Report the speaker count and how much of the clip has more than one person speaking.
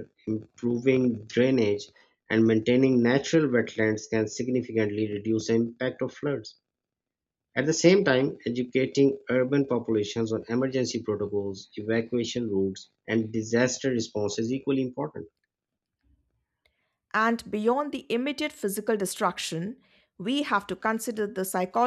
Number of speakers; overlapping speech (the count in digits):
2, no overlap